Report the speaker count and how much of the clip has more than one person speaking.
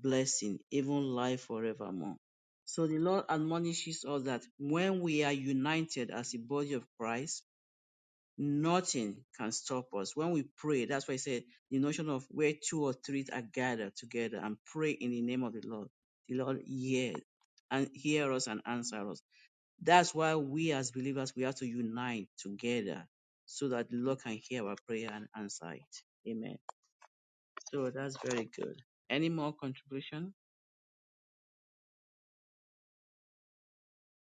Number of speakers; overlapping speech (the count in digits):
1, no overlap